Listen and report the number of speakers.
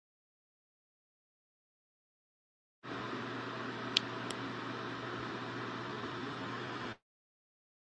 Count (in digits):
0